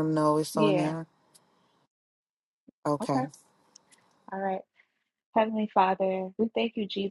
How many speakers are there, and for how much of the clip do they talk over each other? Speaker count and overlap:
2, about 9%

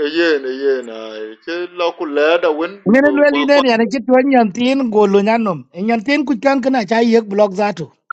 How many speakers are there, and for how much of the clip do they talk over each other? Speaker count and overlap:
2, about 9%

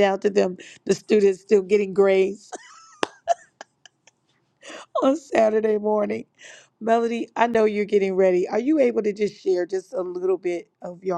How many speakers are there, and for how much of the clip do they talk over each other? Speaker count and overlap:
1, no overlap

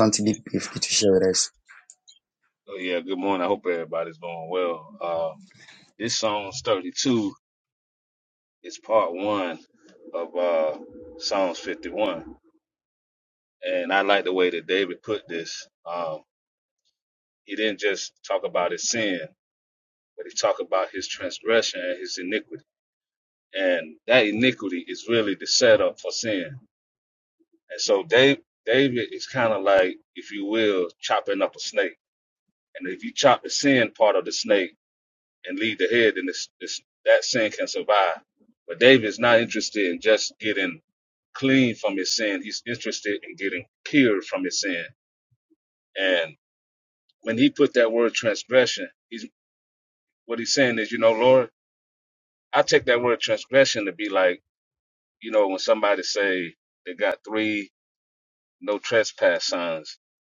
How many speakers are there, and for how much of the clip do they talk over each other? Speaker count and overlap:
2, no overlap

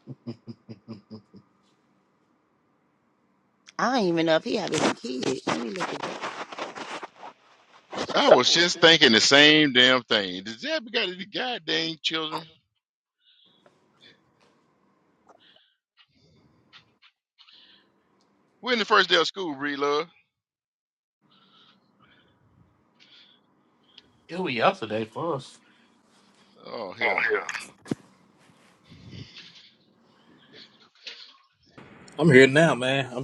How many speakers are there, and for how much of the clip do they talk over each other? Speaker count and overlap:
4, about 1%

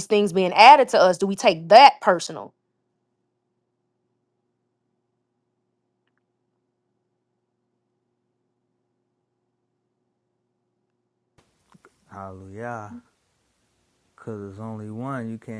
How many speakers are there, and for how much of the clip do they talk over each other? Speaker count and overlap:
2, no overlap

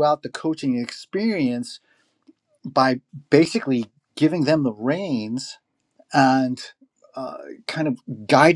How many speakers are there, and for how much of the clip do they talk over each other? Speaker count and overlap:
1, no overlap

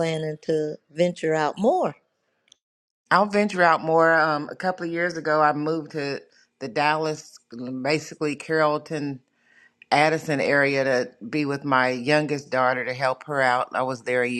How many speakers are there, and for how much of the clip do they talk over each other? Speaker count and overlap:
2, no overlap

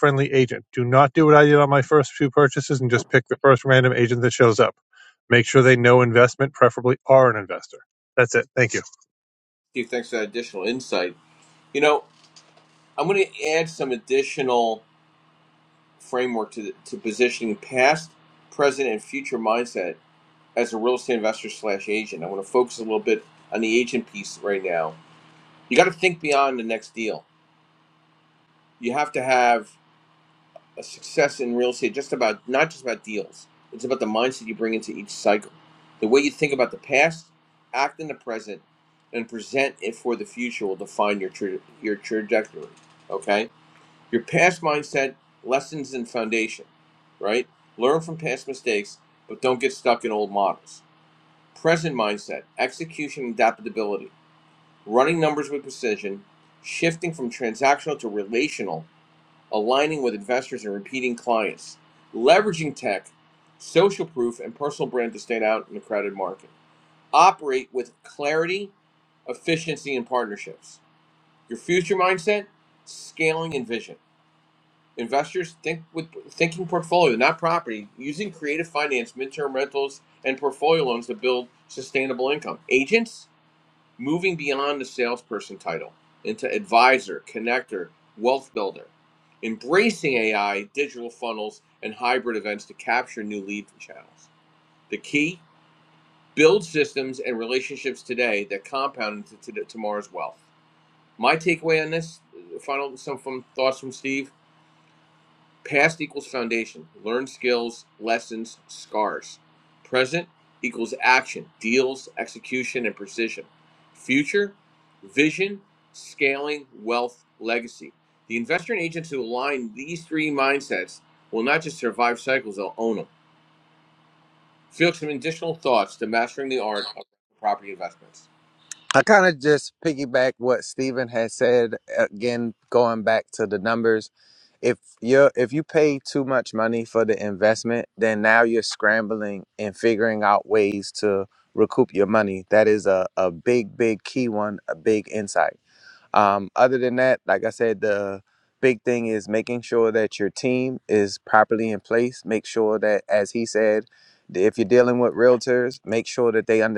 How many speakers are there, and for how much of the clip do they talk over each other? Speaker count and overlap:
3, no overlap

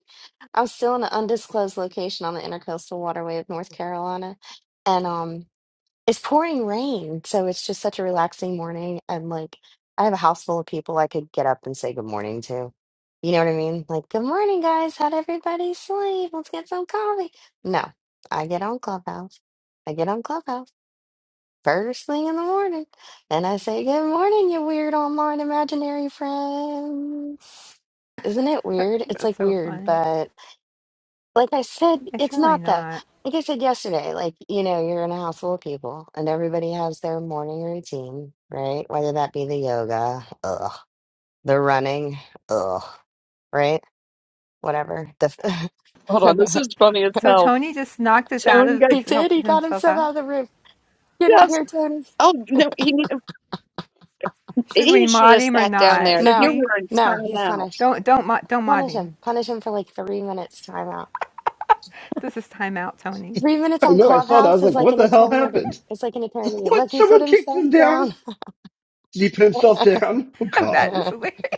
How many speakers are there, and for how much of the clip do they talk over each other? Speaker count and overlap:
4, about 15%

